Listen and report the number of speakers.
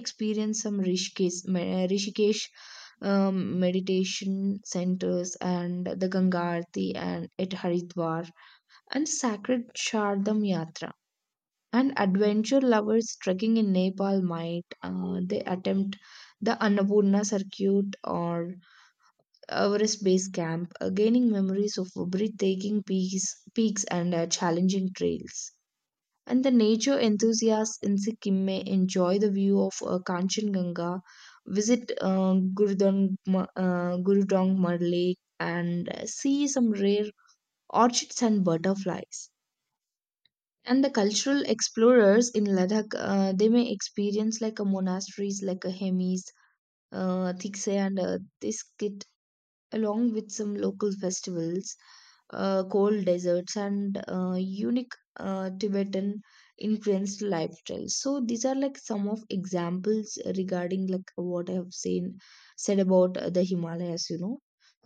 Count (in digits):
1